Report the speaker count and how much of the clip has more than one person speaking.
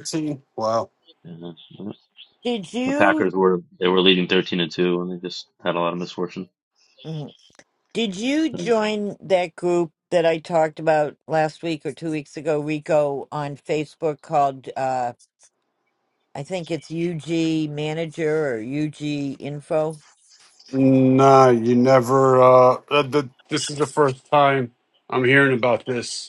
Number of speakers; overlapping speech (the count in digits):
3, about 2%